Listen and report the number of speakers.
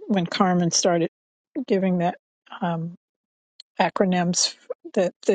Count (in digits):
1